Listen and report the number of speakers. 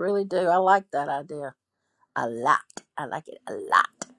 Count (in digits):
1